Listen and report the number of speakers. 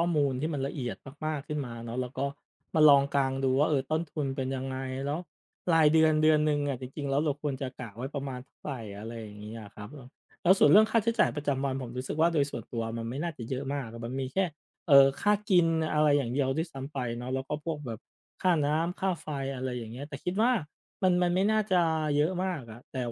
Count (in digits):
1